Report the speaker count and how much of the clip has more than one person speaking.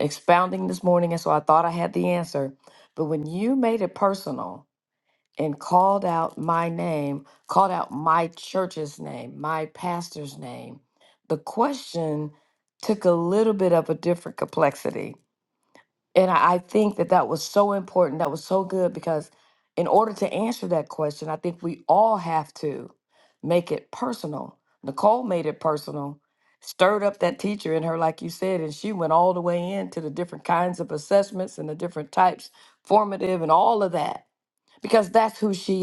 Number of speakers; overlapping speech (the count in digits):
1, no overlap